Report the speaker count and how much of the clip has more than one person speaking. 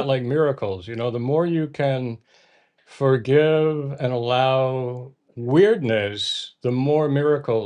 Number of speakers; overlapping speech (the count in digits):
1, no overlap